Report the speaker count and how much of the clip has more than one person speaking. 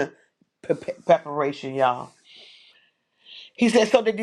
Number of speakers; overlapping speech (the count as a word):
one, no overlap